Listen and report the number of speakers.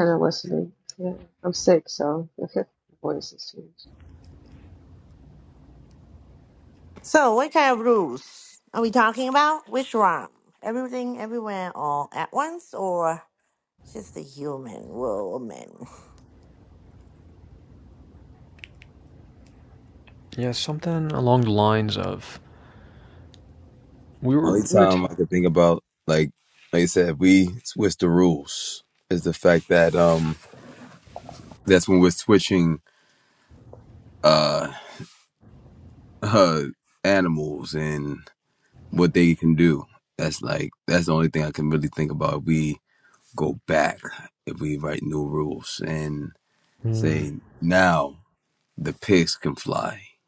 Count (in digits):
4